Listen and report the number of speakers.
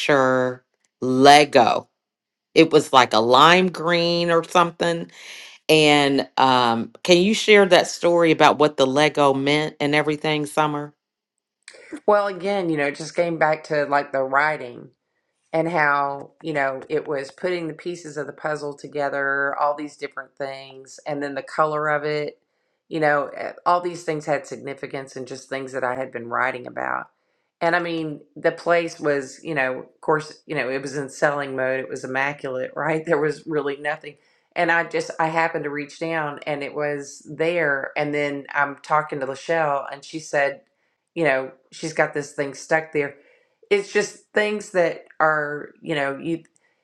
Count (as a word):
two